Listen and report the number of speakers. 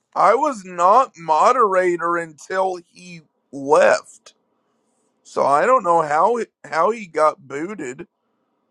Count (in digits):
1